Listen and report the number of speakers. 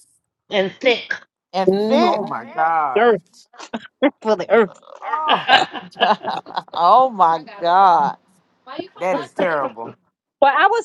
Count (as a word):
four